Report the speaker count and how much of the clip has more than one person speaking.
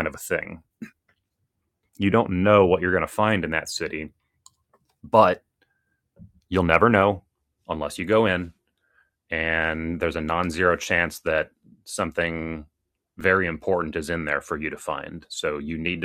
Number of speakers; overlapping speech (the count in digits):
1, no overlap